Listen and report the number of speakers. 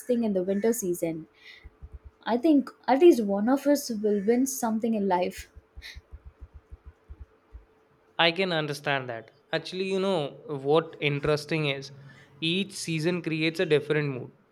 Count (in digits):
2